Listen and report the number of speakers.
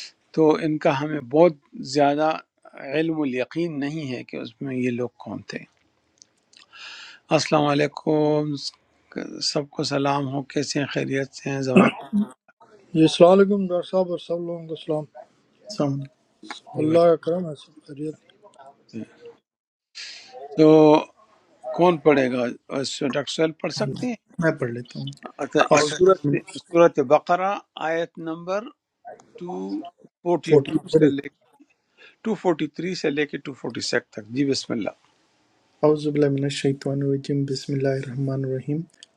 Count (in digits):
3